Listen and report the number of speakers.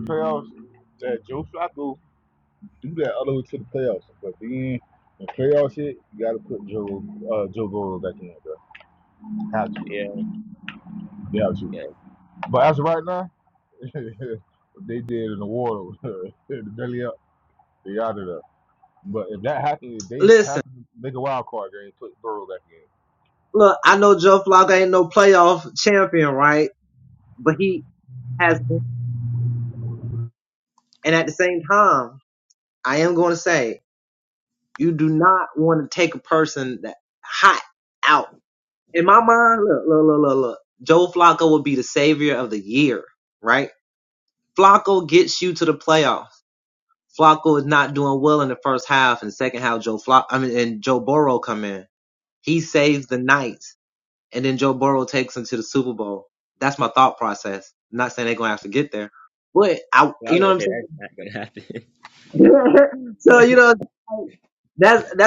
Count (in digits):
3